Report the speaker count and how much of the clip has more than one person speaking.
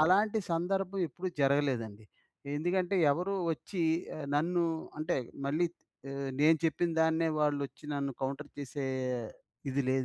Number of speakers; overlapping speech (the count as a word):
one, no overlap